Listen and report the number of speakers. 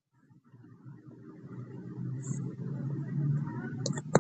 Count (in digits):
0